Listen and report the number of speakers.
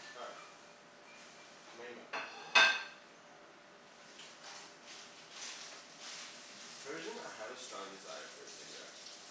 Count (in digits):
1